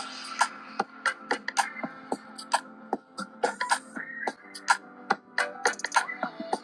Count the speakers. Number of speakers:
0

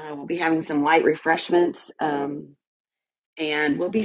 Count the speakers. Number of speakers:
1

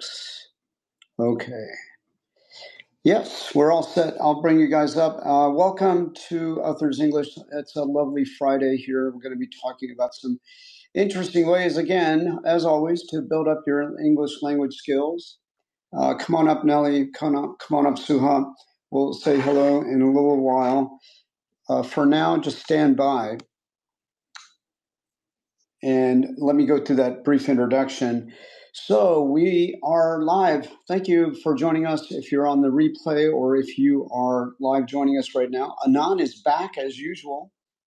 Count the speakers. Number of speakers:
1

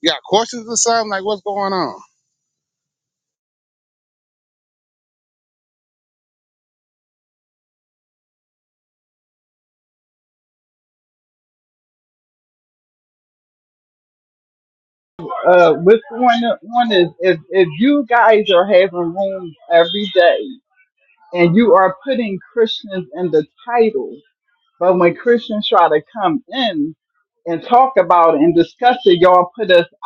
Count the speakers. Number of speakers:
2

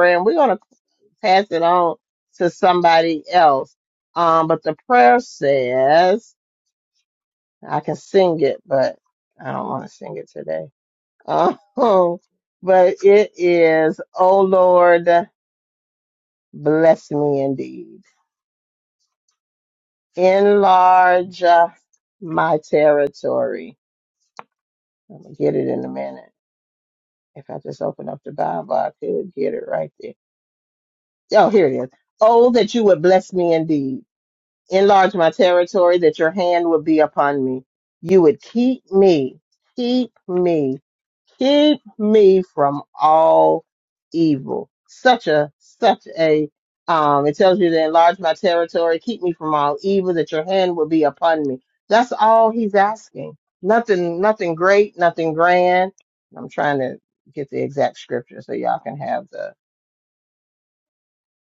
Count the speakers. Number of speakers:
1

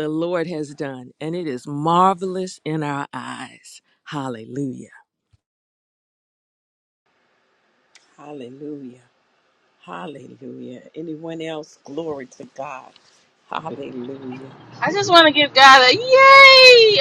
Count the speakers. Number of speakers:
3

